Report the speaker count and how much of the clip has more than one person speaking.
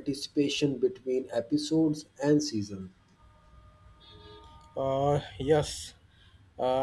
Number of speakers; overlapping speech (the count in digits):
2, no overlap